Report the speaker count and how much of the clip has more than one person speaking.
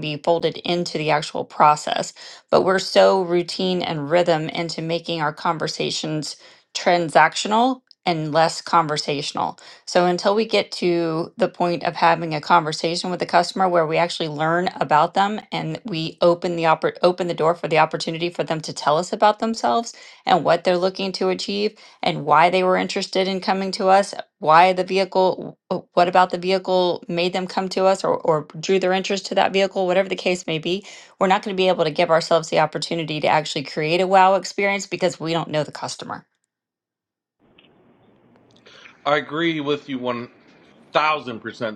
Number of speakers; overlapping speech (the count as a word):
two, no overlap